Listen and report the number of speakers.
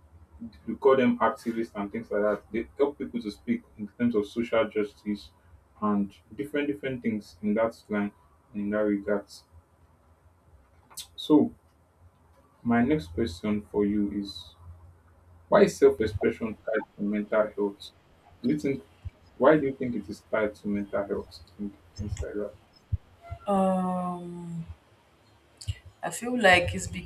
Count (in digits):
2